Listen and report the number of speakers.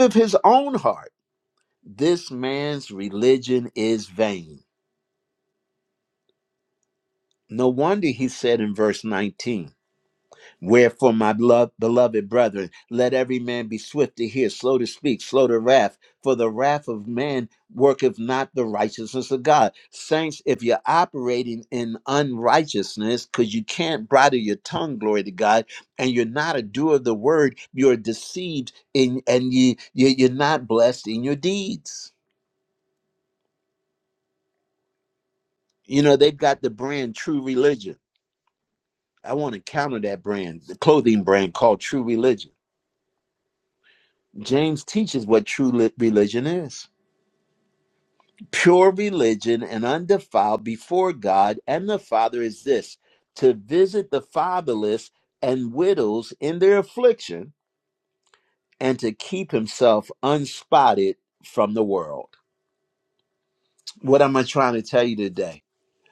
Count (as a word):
one